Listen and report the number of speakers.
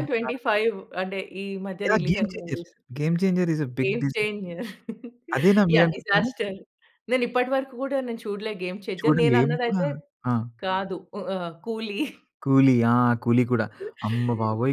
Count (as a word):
two